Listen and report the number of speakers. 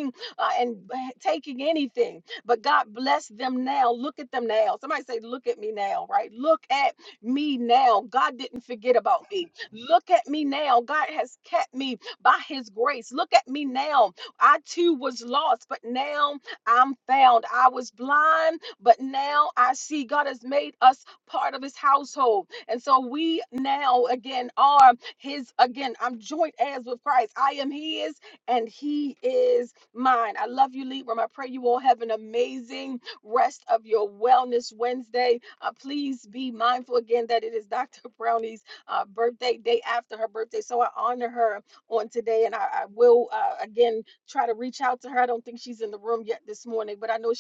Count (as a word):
one